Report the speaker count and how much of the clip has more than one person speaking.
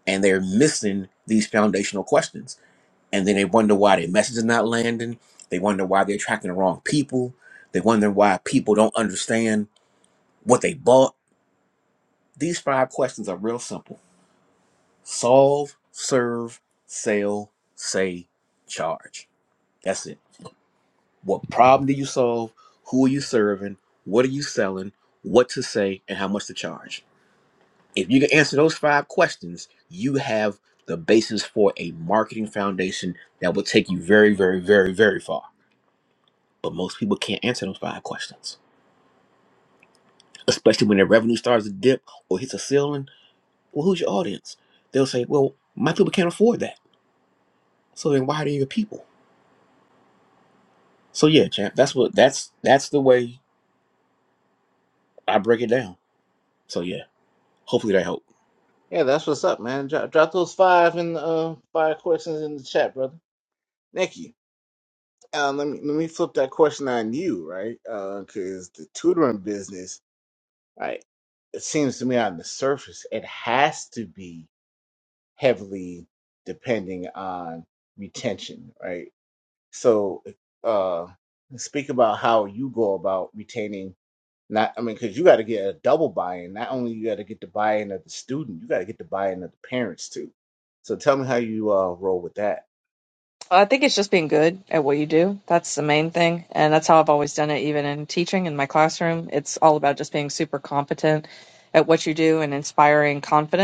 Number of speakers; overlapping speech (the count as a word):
three, no overlap